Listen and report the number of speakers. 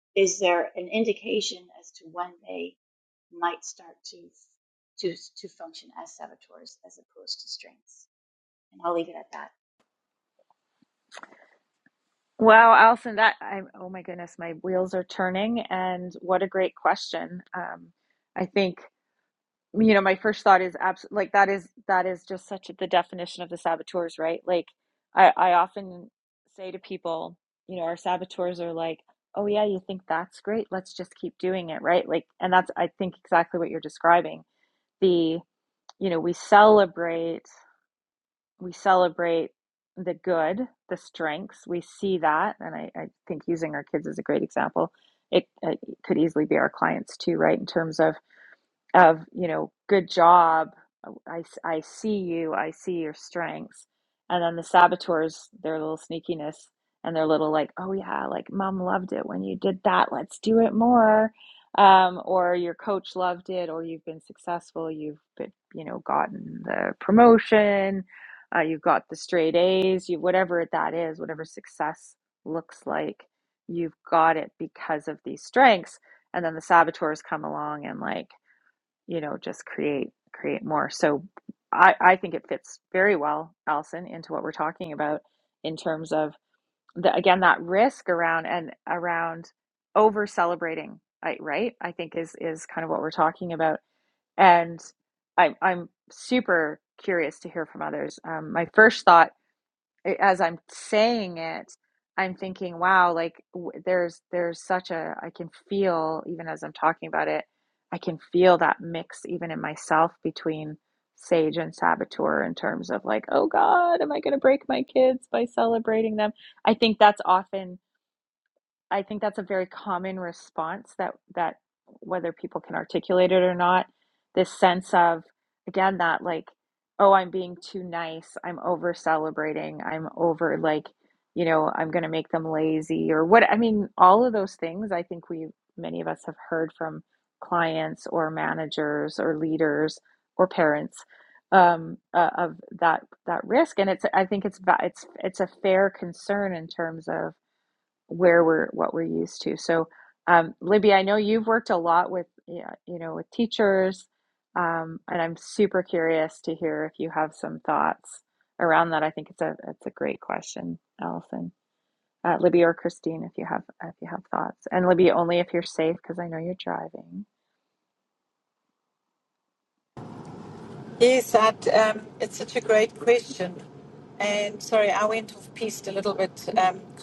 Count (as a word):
three